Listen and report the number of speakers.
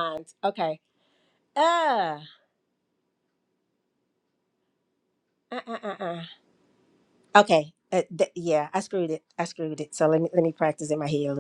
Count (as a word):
one